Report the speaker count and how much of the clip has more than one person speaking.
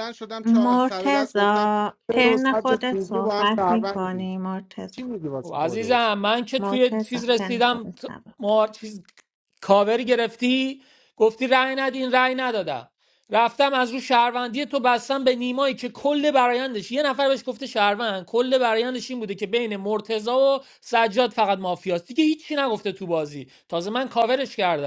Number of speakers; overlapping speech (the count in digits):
3, about 22%